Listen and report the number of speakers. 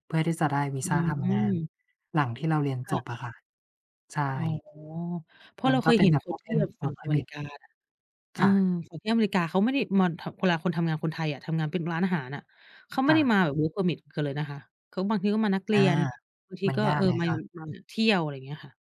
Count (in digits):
2